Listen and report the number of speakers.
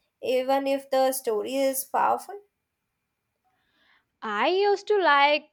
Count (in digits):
2